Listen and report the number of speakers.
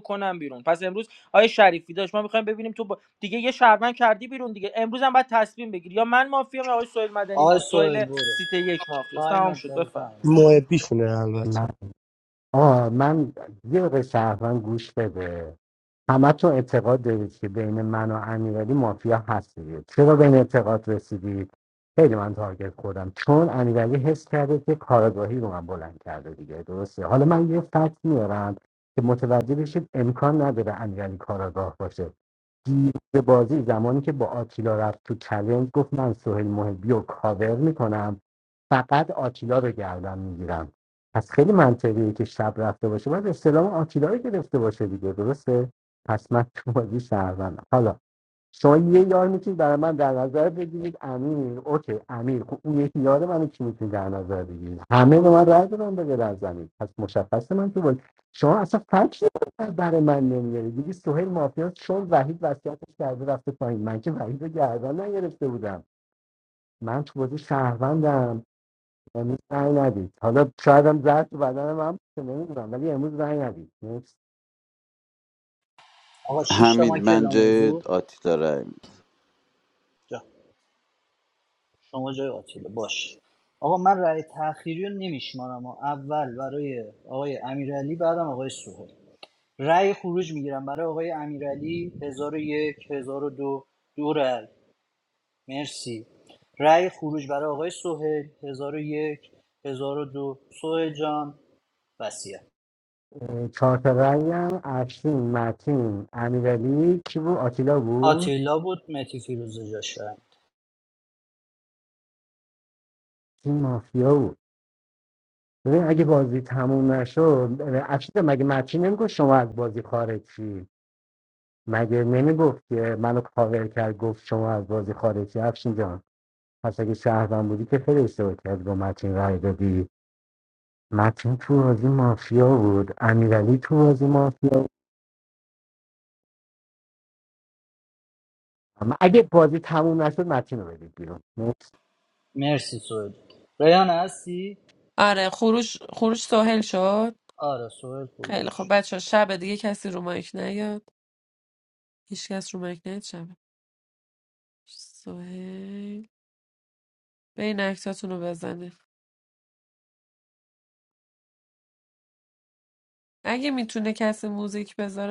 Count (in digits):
6